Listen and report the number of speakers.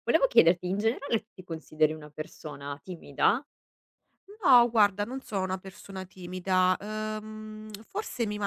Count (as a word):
two